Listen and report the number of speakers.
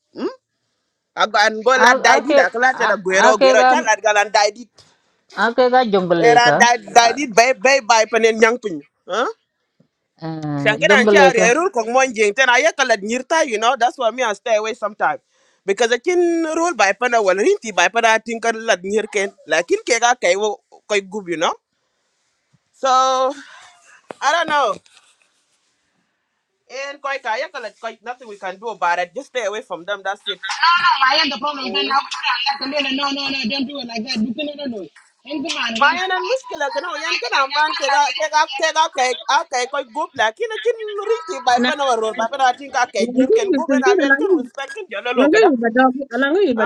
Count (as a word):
four